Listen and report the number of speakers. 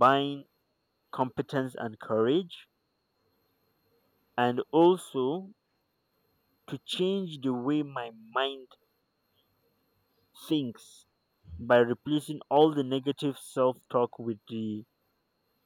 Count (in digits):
1